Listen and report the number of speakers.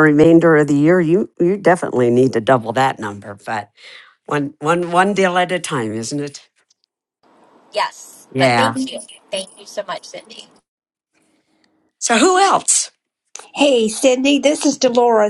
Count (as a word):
three